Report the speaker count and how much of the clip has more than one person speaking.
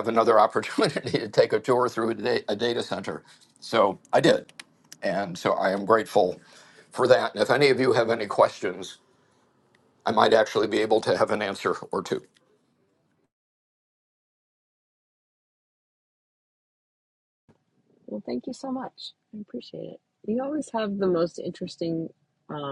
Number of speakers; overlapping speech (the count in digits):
2, no overlap